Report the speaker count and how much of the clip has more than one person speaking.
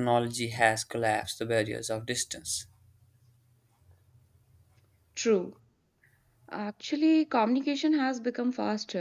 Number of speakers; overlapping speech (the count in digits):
2, no overlap